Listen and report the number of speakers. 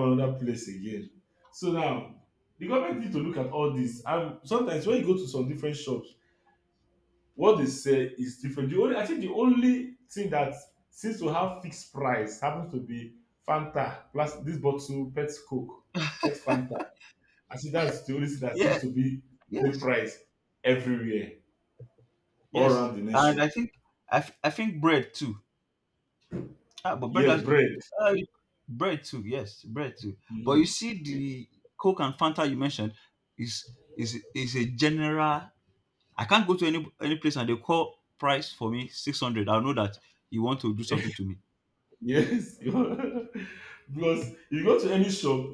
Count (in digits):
2